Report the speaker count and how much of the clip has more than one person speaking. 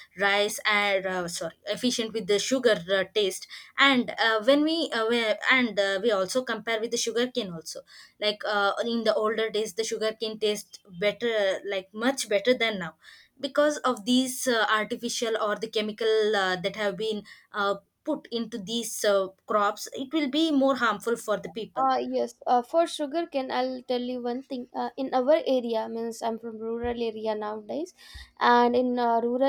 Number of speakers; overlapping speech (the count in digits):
2, under 1%